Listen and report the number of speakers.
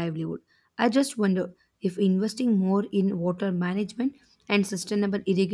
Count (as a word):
one